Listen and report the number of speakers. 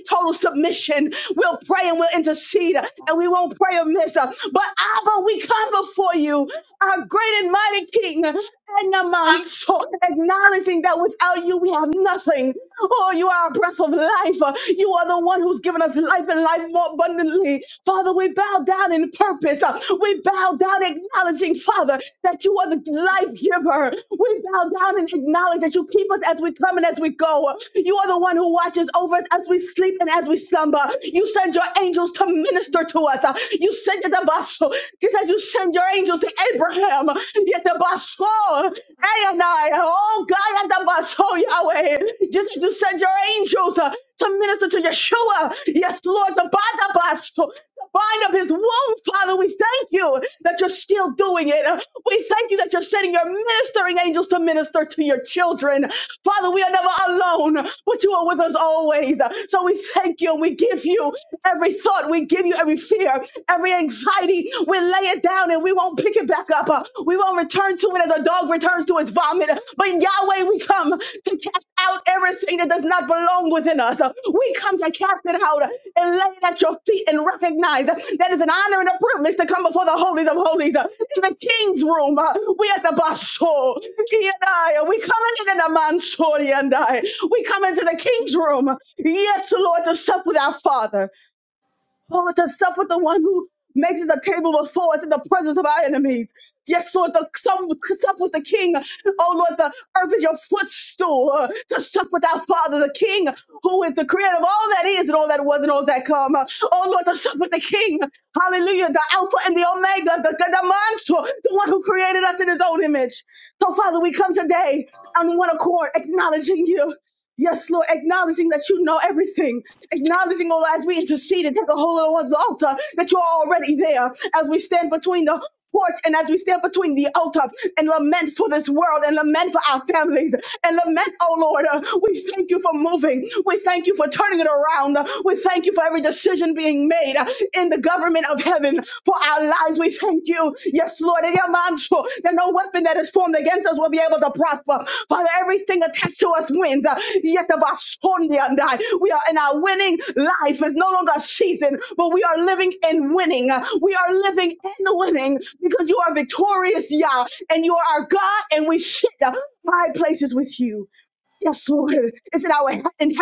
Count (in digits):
1